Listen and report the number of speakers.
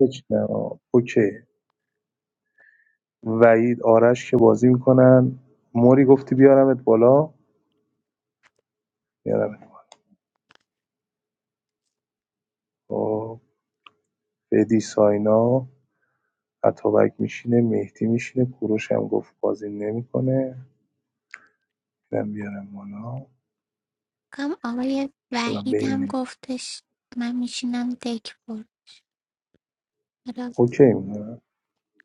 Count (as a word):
two